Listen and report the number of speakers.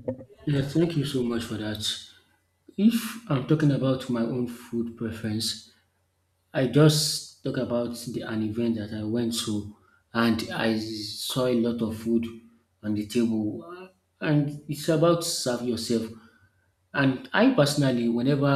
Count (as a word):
one